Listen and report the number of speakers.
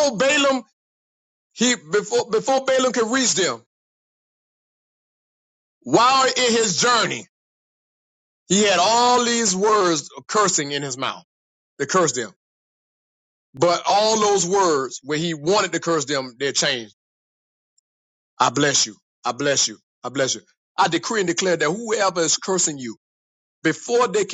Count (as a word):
one